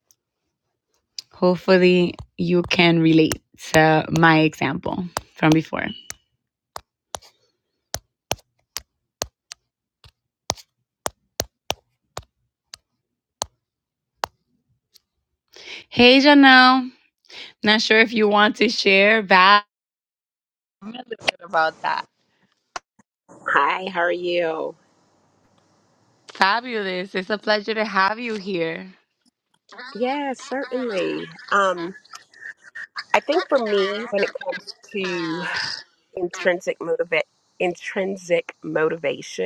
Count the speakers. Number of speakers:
2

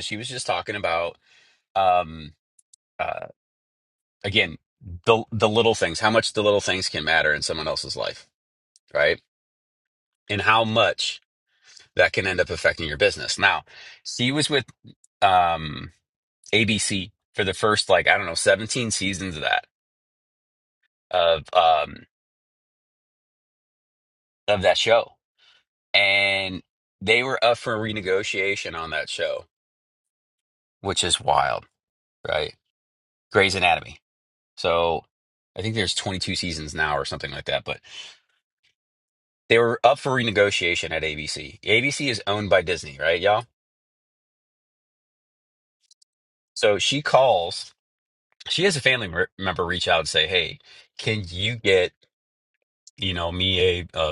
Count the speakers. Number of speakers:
1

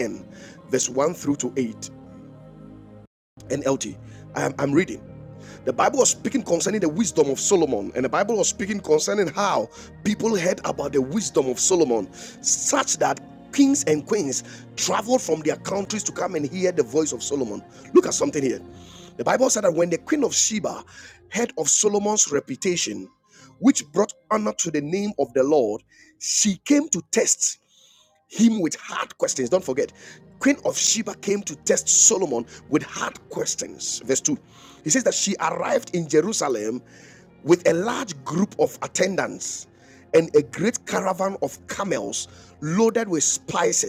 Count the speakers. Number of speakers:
1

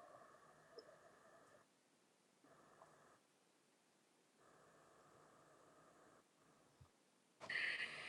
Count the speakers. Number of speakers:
0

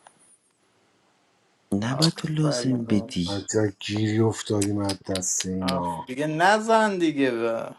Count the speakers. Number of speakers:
3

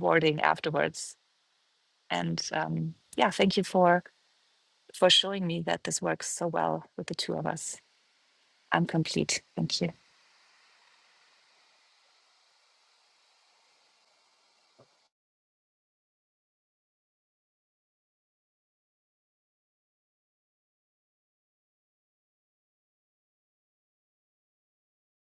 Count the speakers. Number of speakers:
1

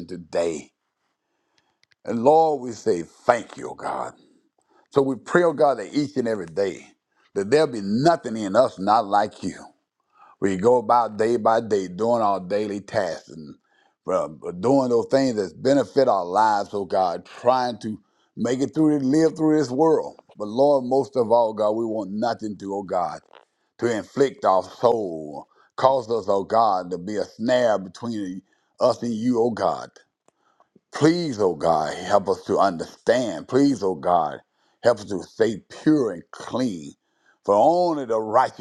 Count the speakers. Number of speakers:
1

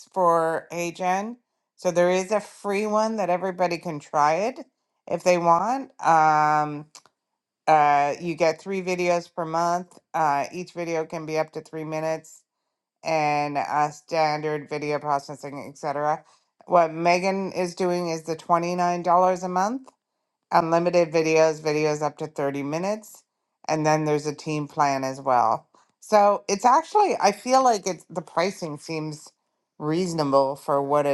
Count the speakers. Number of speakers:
1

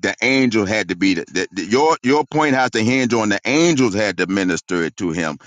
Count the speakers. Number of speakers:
1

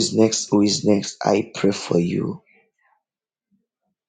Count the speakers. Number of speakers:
1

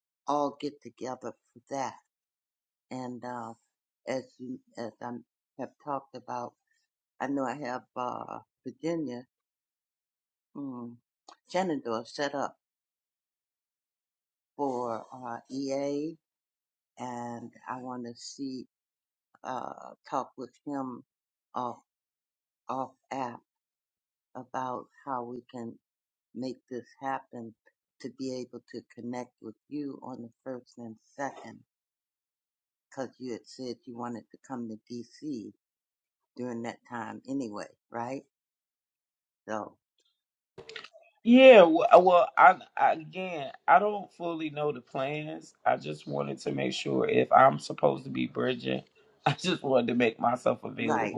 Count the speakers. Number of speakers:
2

